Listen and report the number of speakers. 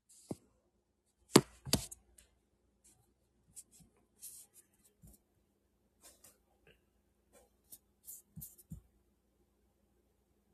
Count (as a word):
zero